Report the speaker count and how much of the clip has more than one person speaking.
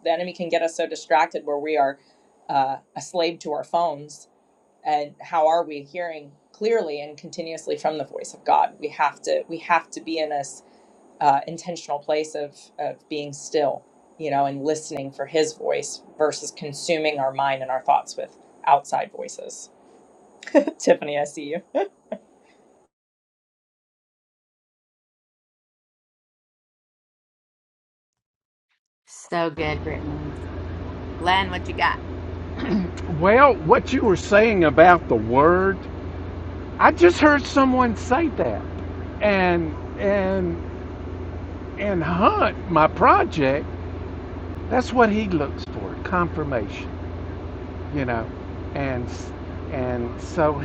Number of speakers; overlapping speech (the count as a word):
three, no overlap